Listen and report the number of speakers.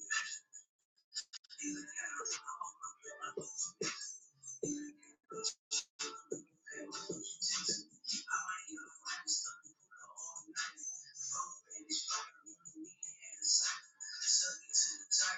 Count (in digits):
0